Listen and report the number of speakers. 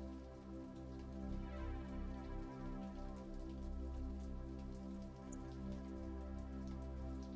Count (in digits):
0